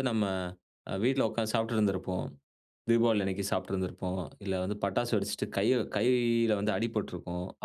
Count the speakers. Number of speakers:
1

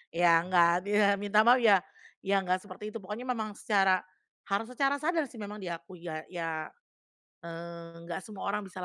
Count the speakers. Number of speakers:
1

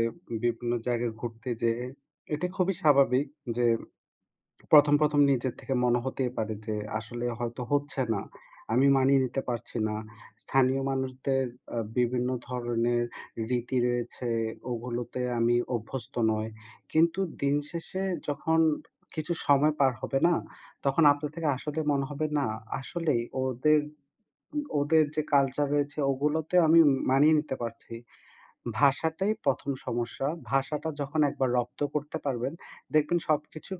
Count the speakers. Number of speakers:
1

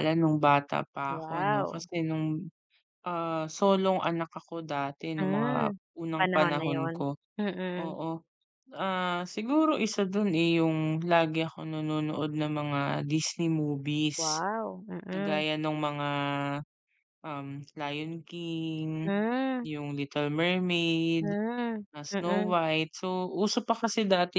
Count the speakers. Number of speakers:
2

